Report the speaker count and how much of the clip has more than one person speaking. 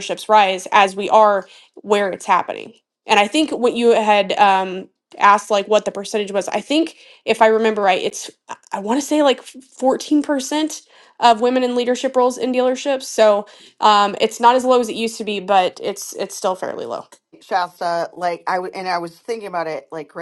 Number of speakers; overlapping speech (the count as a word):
two, no overlap